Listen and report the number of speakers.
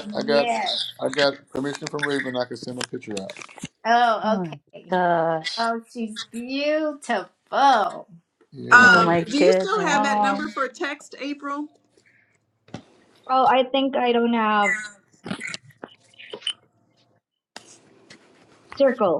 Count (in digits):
5